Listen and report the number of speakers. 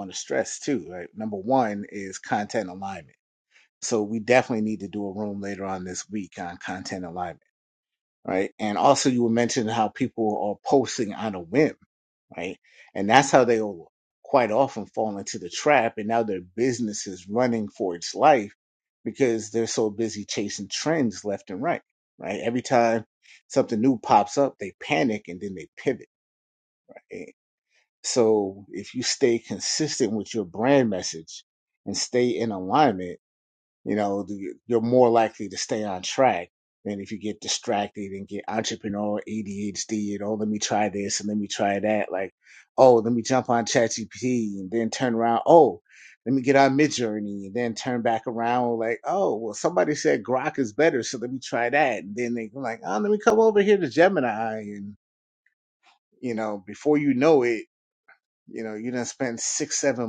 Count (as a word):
one